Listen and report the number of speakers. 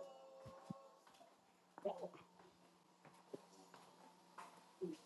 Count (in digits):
0